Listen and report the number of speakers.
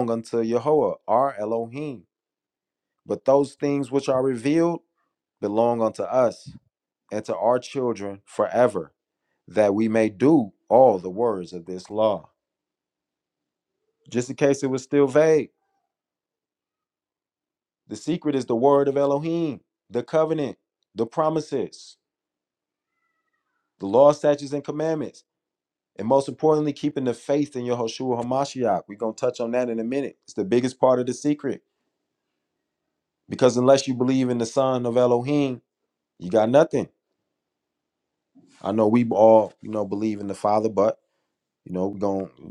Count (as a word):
one